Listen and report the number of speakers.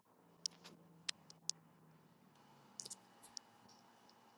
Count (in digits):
0